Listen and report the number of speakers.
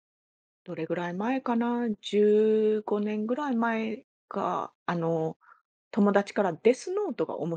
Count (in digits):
1